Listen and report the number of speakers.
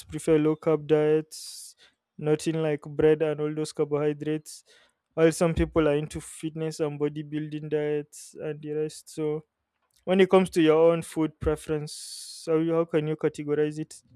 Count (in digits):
1